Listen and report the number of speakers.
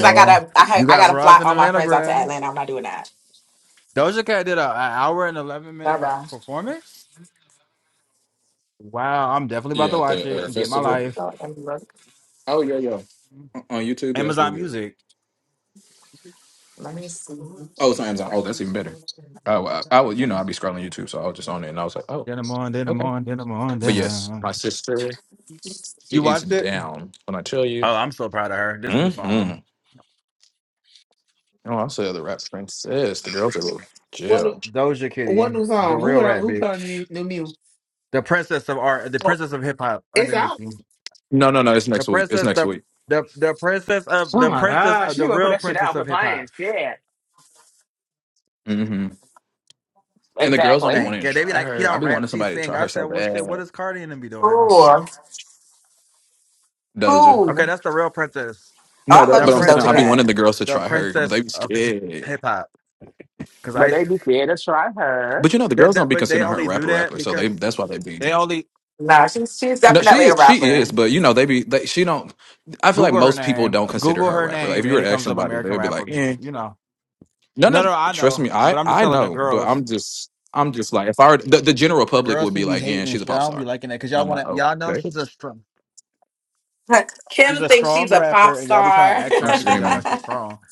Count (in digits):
4